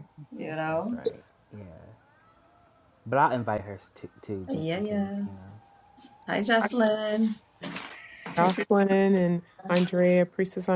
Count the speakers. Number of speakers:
3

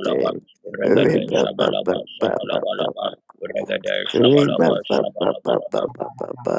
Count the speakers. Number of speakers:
2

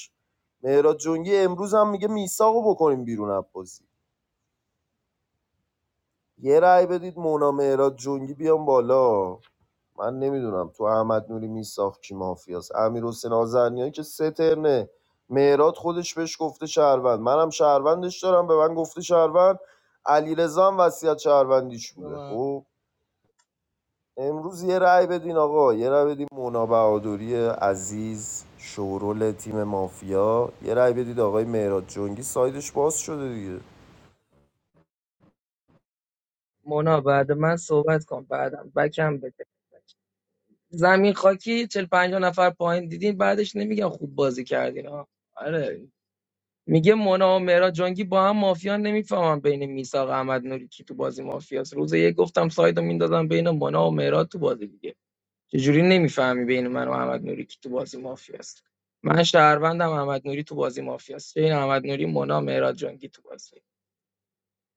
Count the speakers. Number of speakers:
2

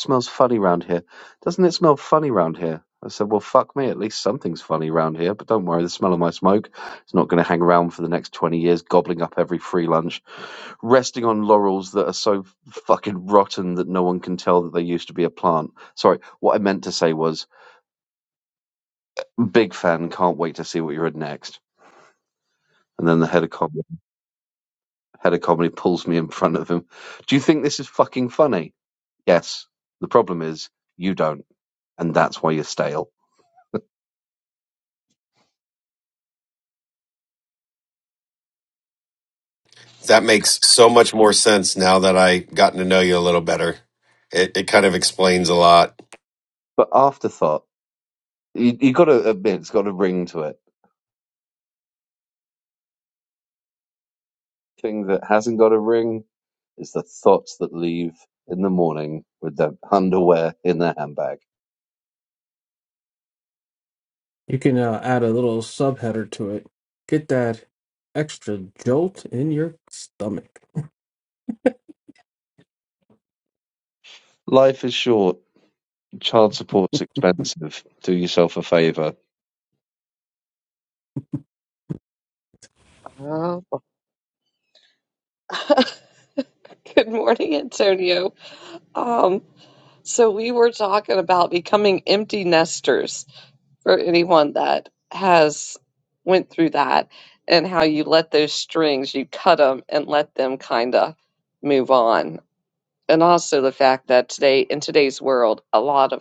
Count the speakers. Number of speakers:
4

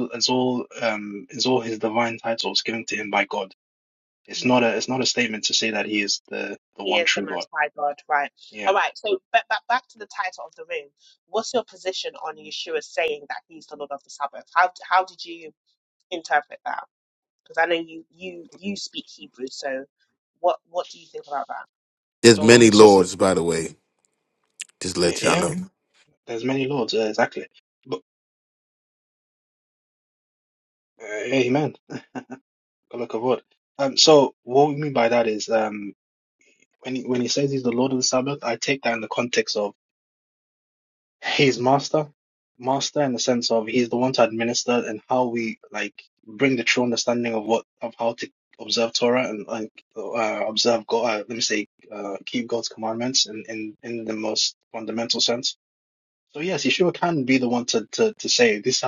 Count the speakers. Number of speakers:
3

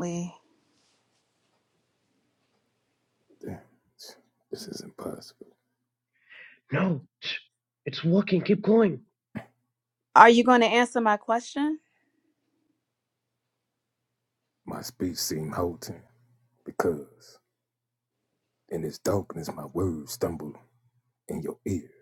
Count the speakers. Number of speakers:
3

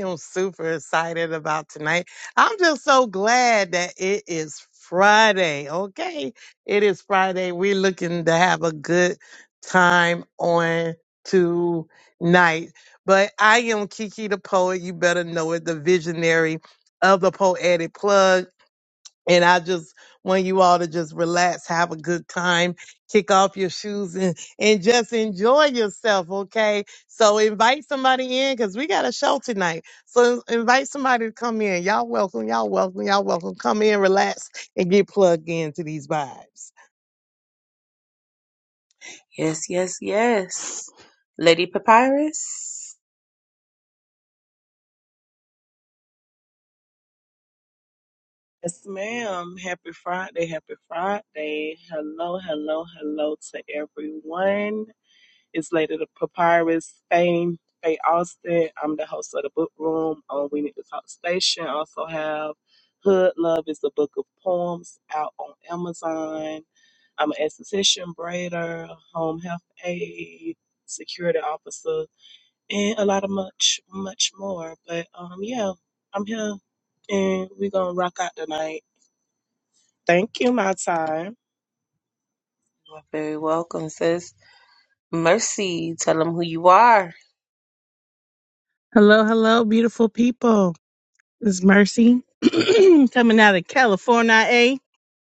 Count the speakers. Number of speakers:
4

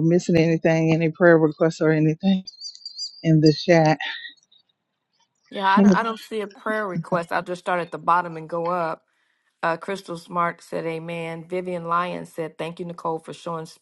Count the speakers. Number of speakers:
2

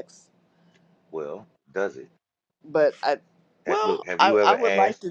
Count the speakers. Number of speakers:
2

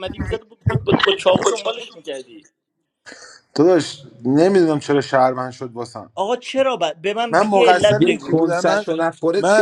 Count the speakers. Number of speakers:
3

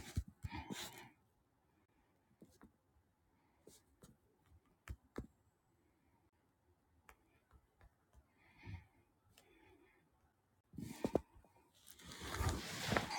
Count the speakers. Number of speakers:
0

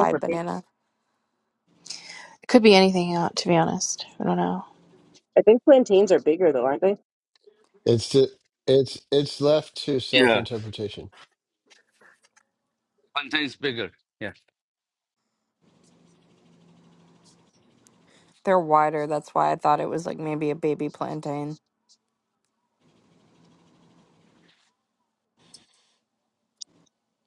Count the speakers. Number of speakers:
5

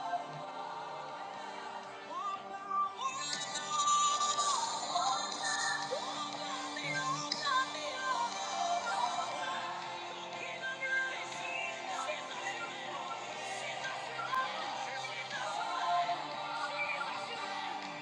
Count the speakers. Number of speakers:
0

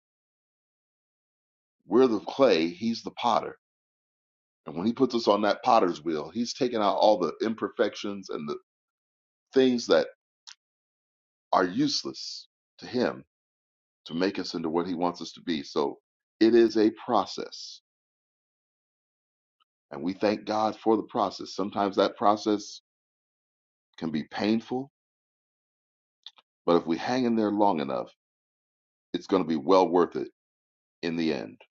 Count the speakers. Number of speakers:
1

